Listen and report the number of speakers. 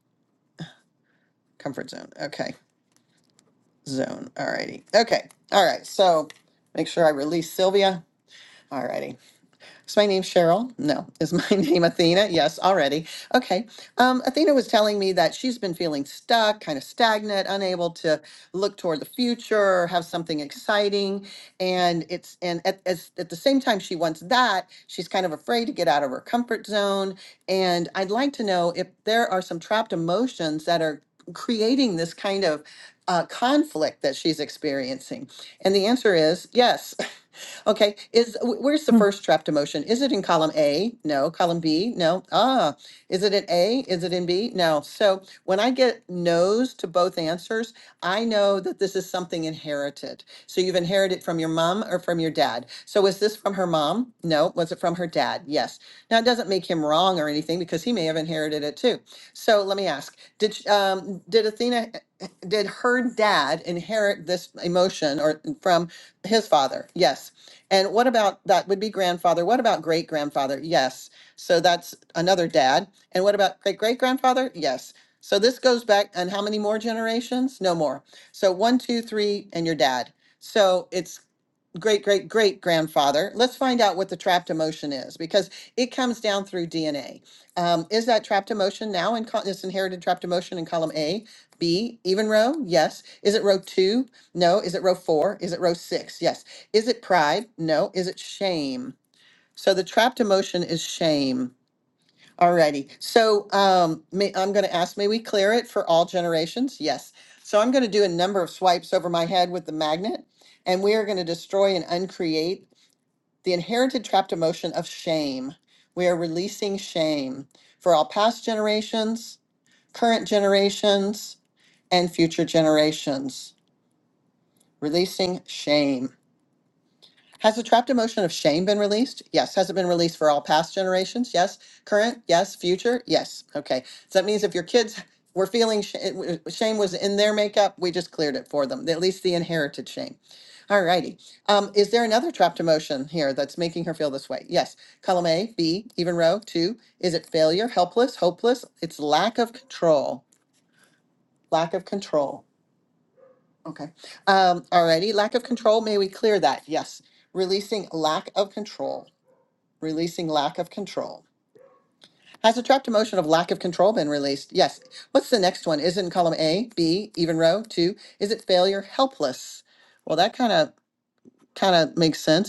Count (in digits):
1